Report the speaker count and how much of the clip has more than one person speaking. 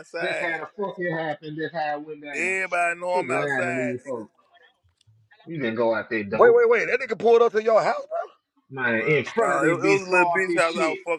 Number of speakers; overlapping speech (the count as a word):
three, about 35%